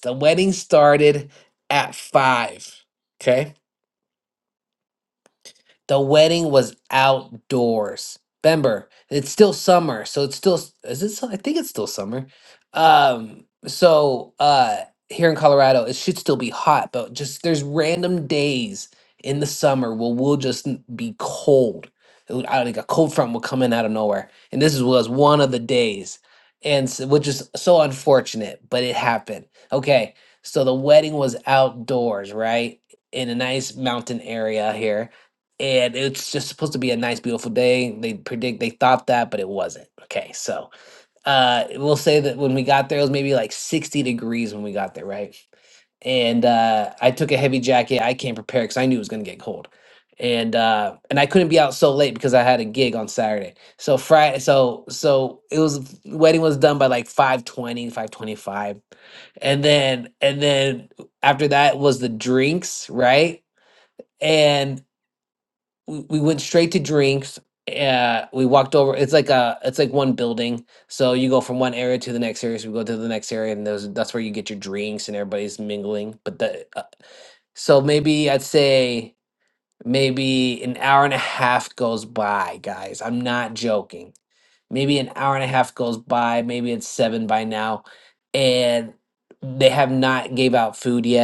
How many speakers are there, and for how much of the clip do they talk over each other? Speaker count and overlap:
one, no overlap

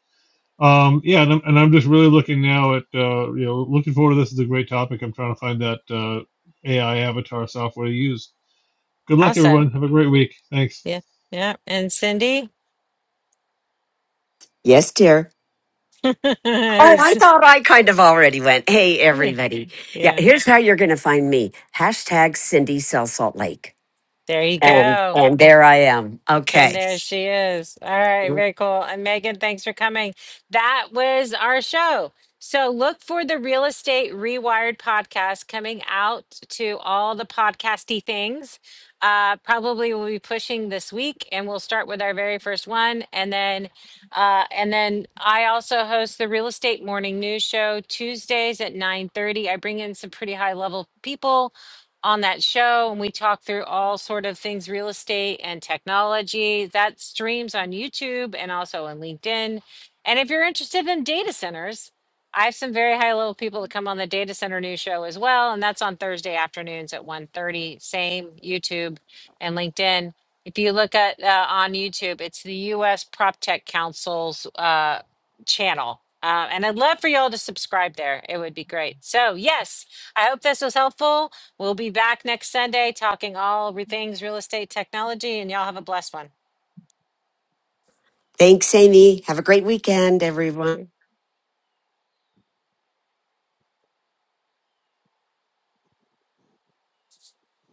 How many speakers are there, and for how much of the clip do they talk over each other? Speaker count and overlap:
three, about 2%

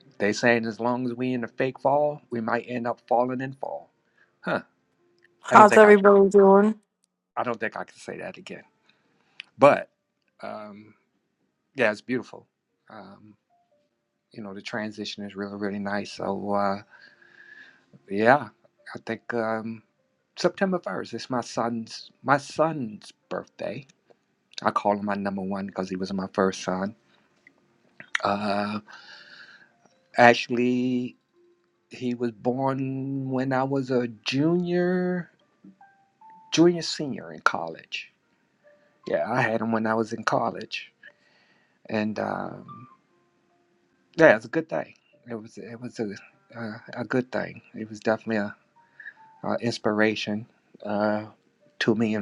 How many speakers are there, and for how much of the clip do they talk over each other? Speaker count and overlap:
two, about 1%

